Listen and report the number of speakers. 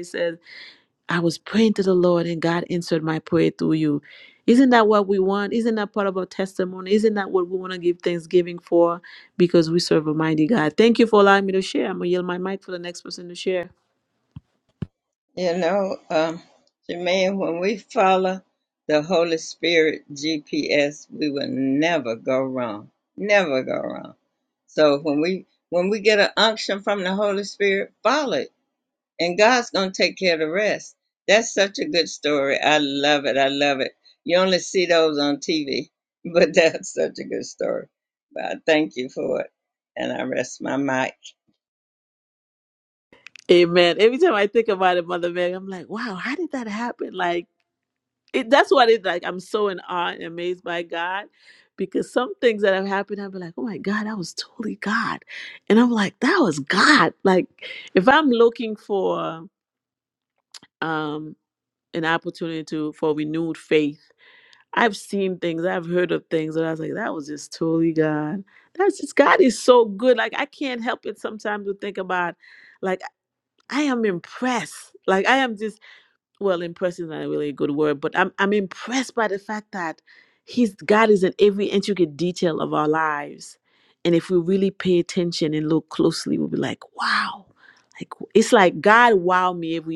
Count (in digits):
2